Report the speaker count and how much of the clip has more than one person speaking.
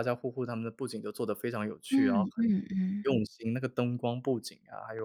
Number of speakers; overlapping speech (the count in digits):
2, about 12%